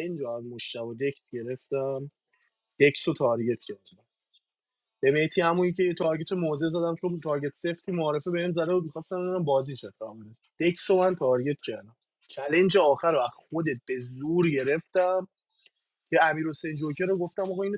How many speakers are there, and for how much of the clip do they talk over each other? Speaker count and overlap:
one, no overlap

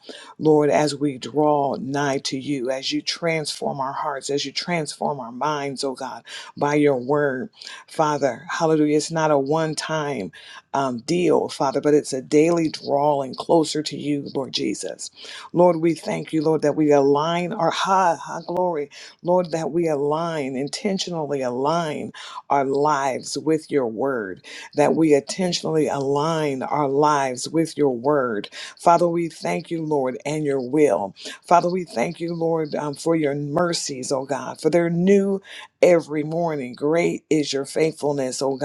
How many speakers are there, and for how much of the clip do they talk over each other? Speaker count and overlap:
one, no overlap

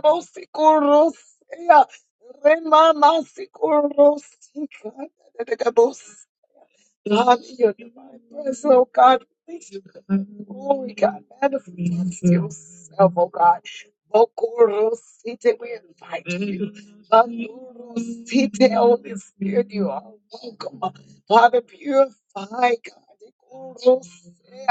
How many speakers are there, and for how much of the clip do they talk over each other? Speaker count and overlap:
one, no overlap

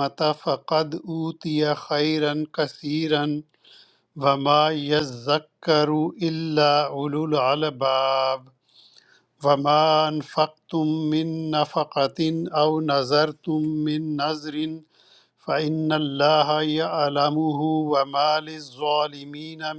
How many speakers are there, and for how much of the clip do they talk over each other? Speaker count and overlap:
one, no overlap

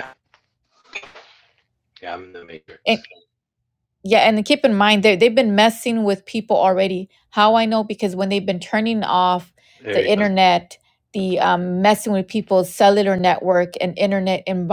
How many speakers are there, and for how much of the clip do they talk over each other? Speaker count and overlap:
two, about 3%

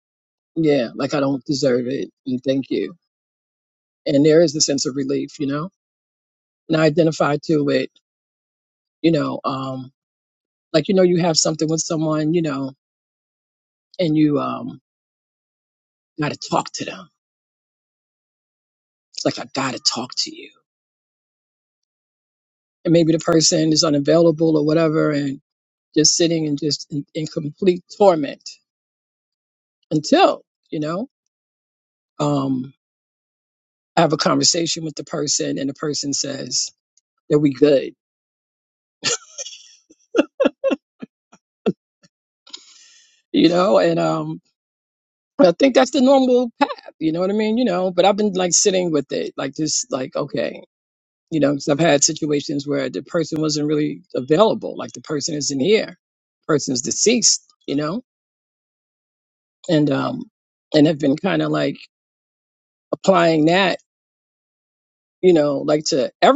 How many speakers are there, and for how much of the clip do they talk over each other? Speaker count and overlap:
one, no overlap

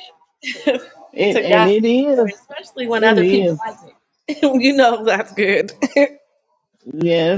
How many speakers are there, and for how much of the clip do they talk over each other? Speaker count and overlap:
two, about 21%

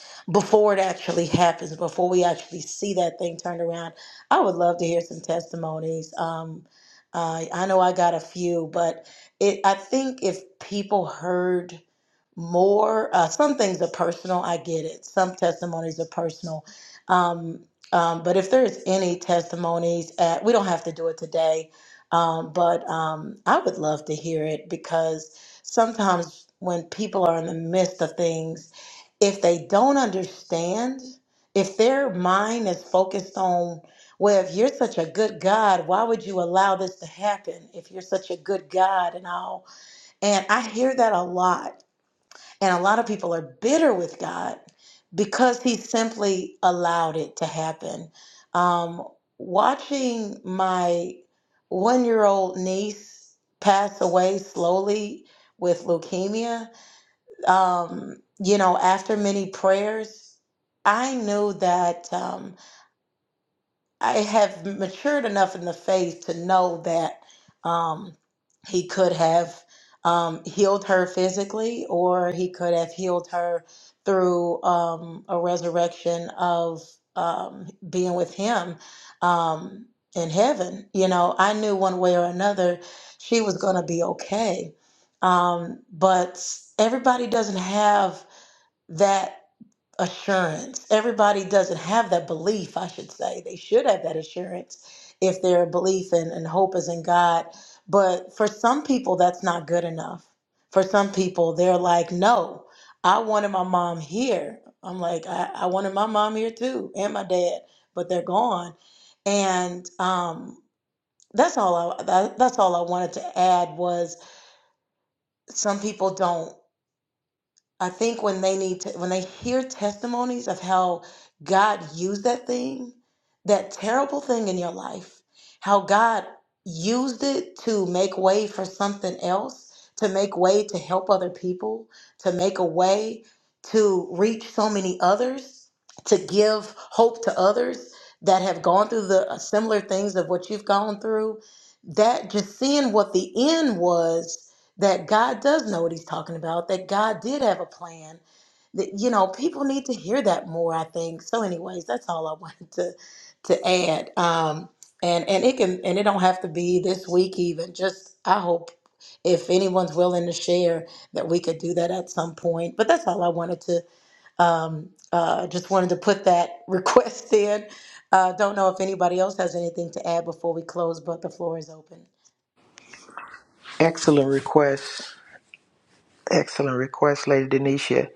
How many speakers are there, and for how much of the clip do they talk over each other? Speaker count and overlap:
two, no overlap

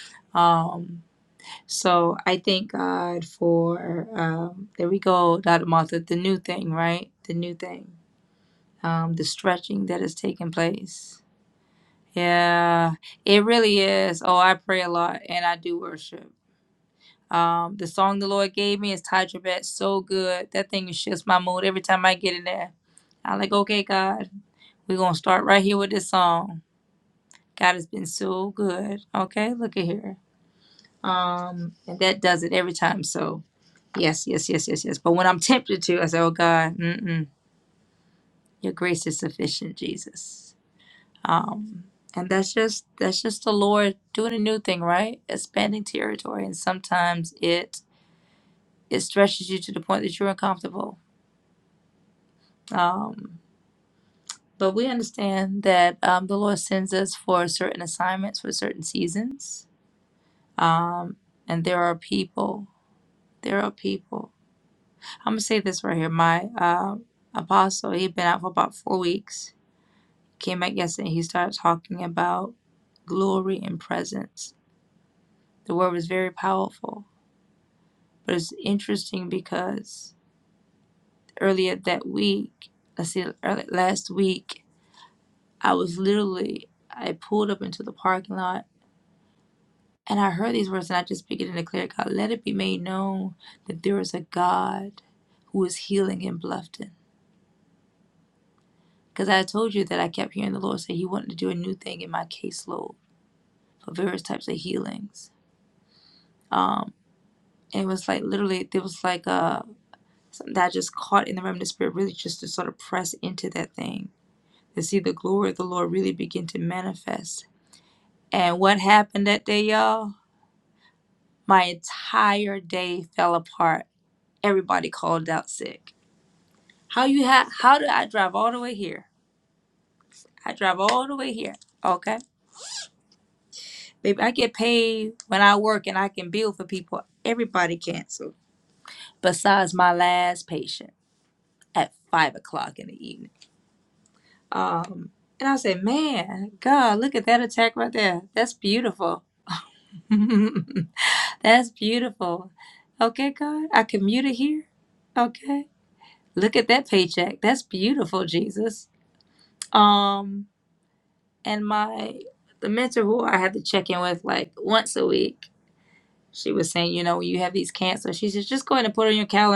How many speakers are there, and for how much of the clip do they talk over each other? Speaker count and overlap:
one, no overlap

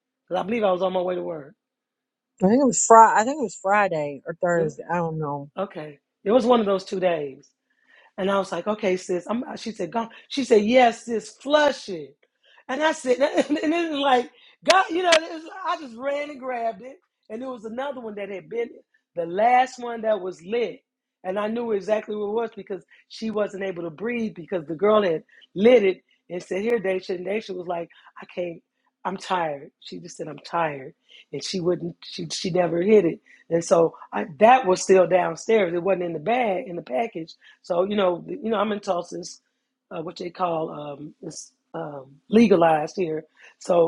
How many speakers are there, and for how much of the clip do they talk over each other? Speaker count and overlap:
two, under 1%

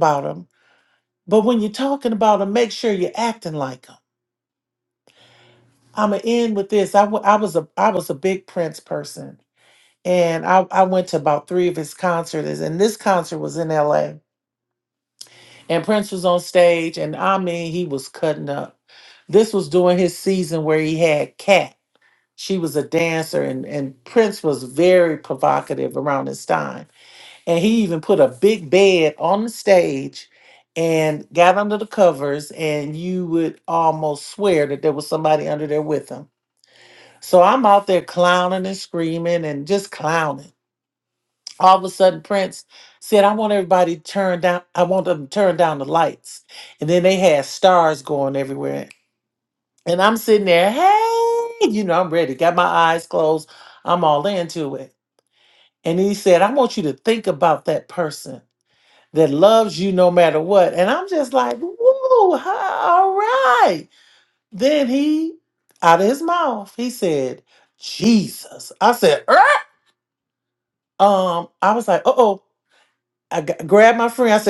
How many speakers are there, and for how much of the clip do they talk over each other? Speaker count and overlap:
one, no overlap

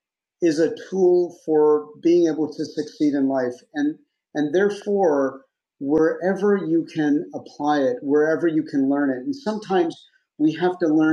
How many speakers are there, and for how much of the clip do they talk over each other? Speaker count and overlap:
one, no overlap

